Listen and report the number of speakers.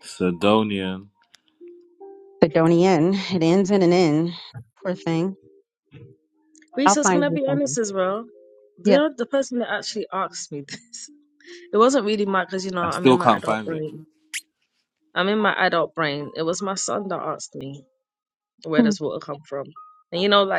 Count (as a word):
three